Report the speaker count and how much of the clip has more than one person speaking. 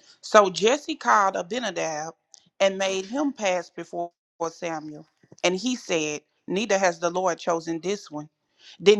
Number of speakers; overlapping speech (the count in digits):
1, no overlap